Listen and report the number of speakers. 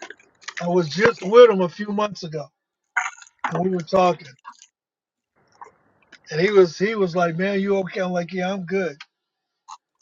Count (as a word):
one